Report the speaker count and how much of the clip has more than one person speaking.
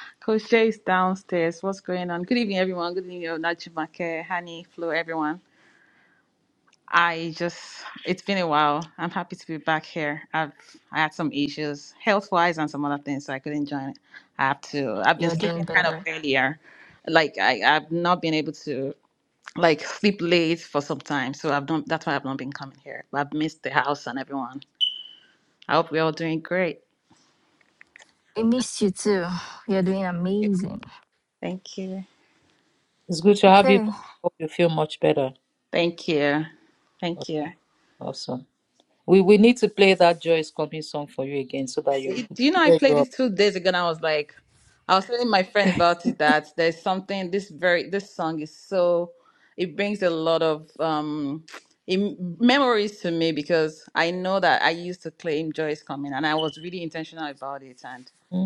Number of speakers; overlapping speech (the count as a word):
three, about 3%